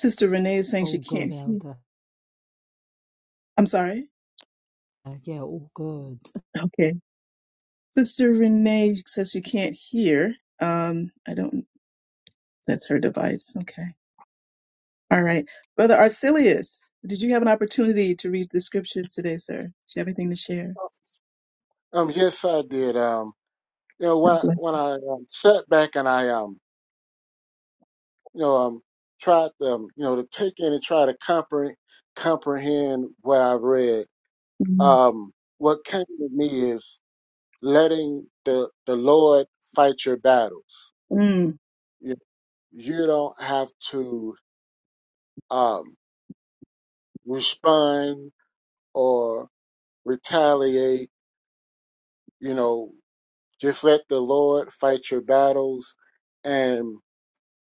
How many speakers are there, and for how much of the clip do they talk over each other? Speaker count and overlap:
3, about 2%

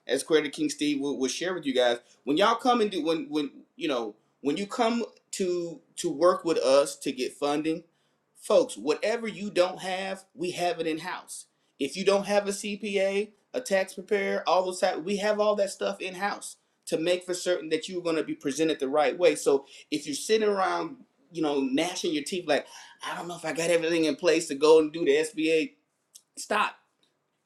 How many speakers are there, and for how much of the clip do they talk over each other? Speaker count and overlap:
1, no overlap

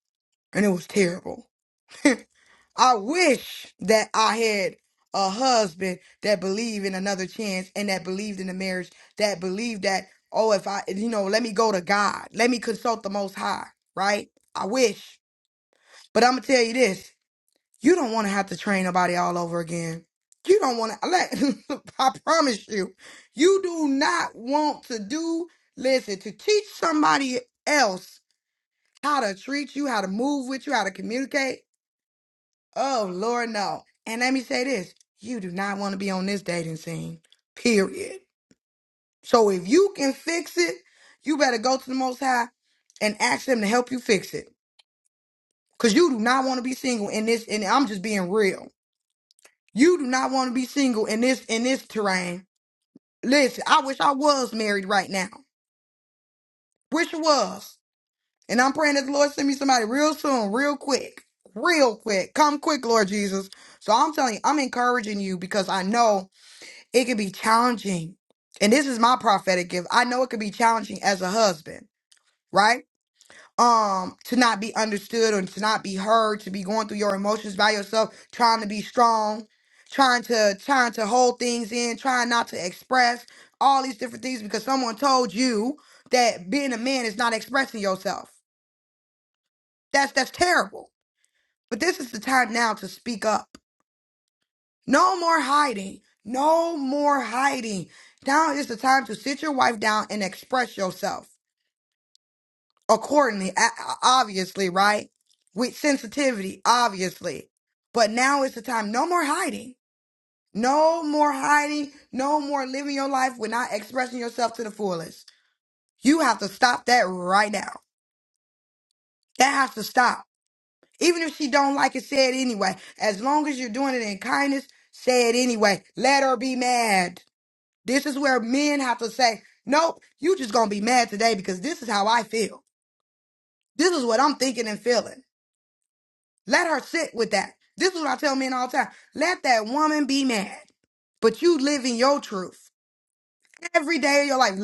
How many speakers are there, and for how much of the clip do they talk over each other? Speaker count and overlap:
1, no overlap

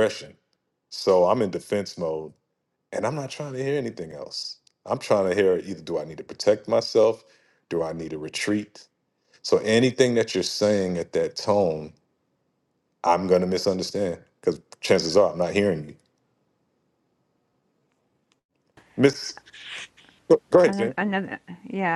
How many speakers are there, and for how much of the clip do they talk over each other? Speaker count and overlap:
2, about 1%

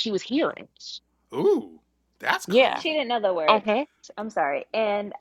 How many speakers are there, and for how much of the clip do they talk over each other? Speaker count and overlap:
3, about 13%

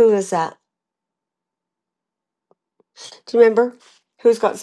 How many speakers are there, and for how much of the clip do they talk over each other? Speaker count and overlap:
1, no overlap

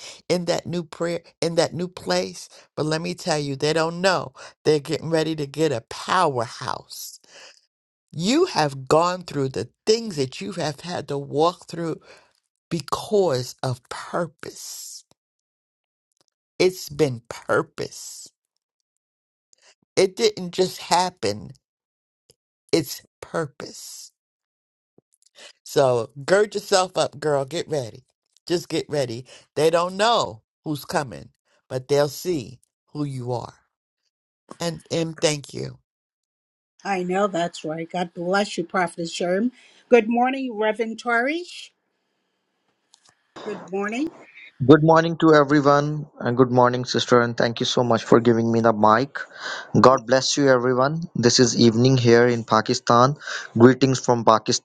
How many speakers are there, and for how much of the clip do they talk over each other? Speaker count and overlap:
3, no overlap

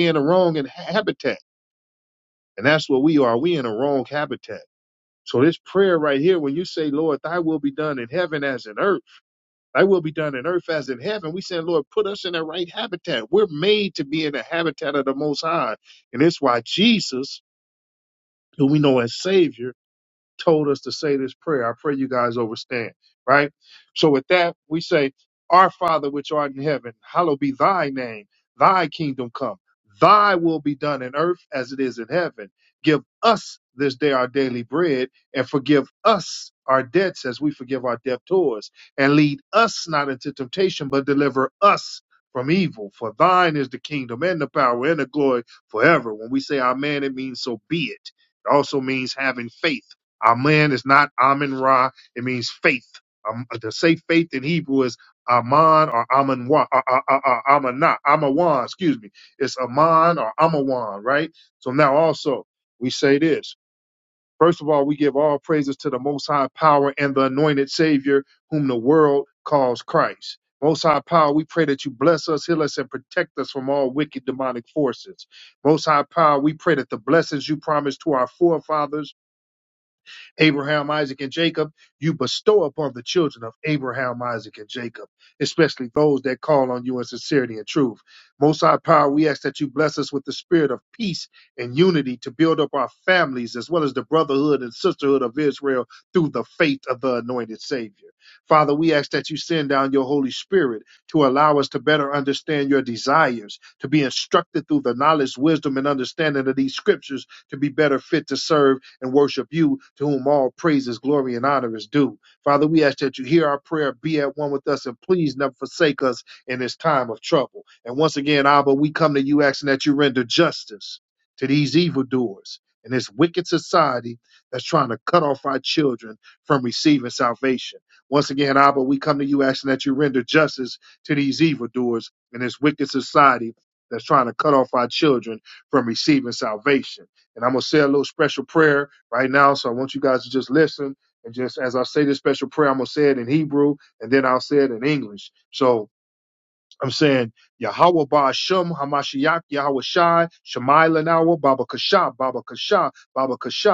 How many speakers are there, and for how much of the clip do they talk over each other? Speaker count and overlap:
1, no overlap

